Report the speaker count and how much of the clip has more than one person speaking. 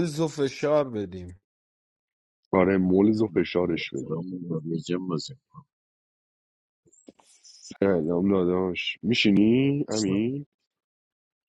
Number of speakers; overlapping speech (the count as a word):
three, about 4%